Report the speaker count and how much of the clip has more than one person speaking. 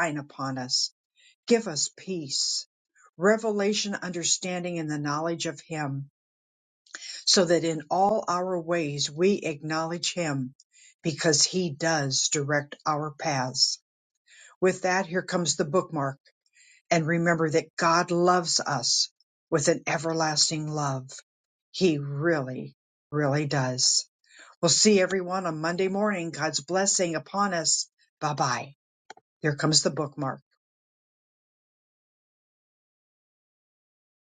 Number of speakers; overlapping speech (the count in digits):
1, no overlap